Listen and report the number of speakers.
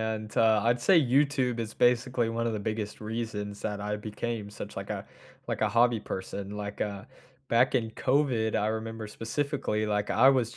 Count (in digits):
1